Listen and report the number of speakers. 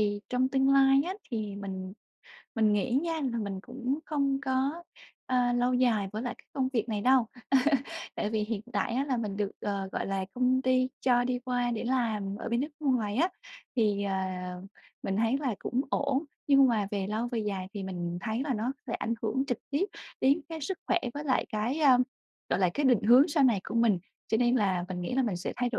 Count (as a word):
one